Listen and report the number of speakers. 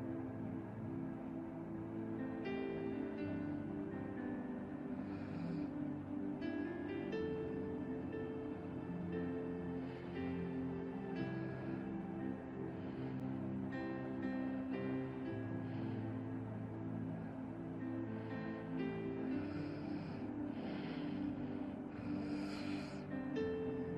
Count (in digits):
0